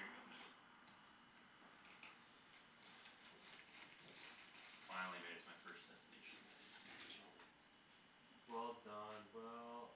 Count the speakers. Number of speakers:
two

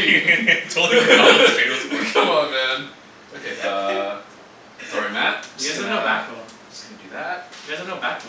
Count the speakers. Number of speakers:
three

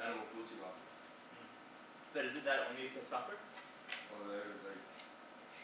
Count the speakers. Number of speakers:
two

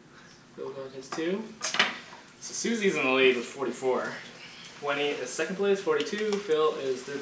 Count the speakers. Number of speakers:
one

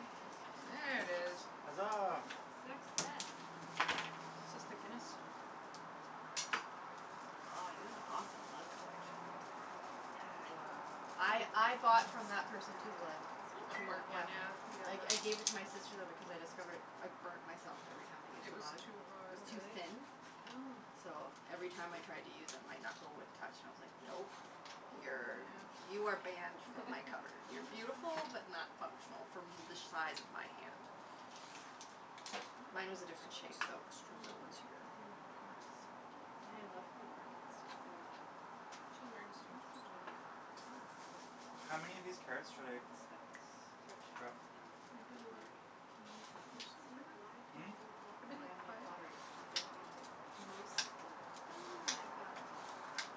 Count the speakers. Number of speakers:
four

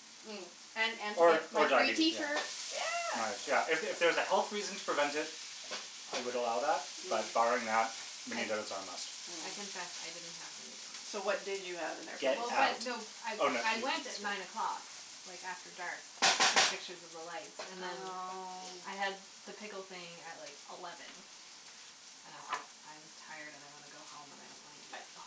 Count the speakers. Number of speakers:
three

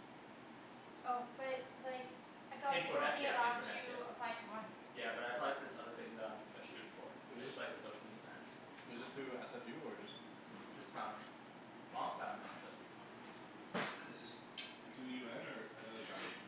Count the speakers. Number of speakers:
four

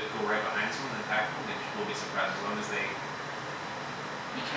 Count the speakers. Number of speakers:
one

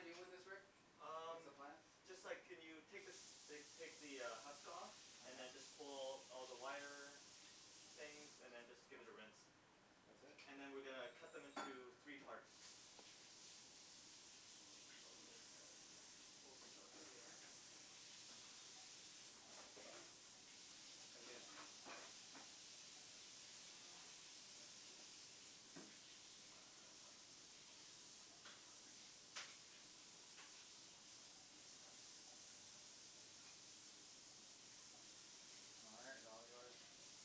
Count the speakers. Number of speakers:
two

